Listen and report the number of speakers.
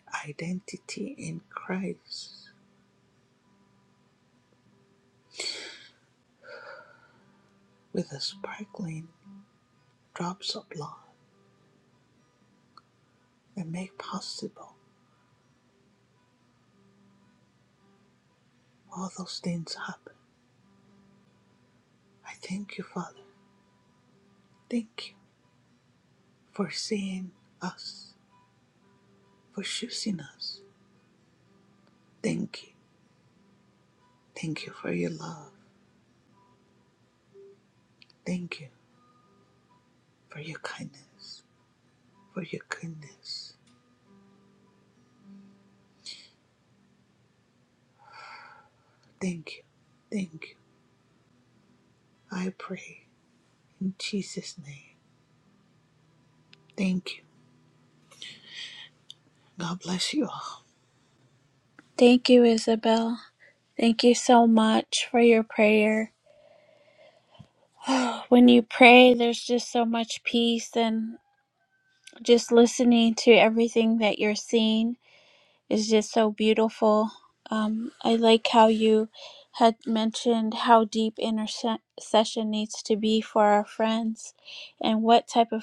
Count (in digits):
2